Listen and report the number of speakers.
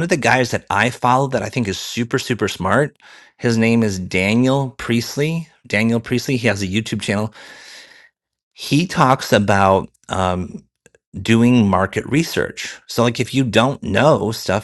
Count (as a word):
one